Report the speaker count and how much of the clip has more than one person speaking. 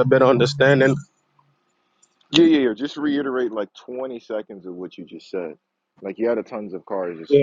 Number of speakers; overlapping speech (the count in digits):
2, about 2%